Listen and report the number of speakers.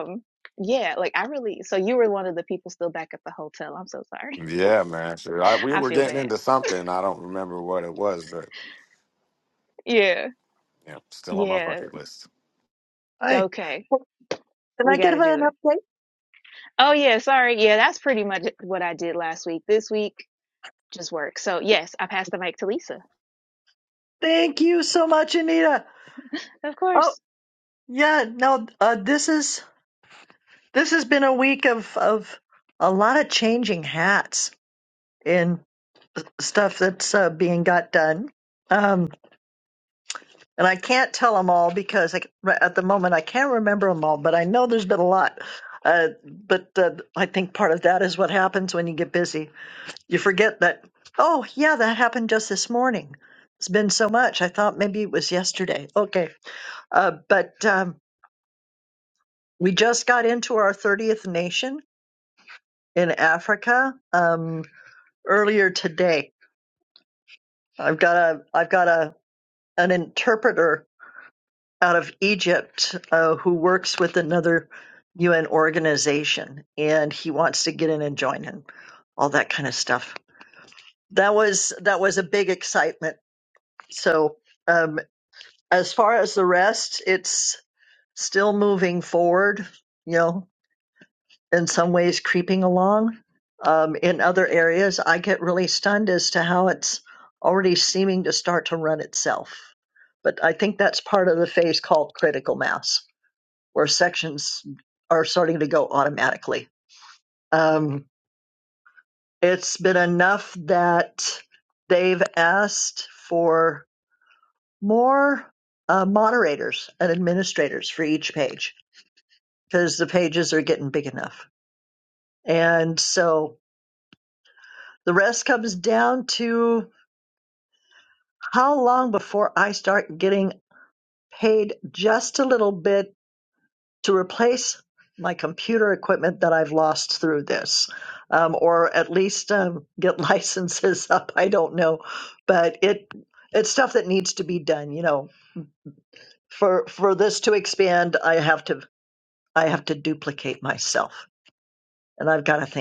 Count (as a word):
three